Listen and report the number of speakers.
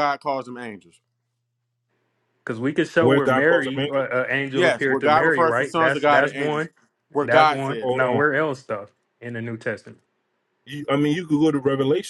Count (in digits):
3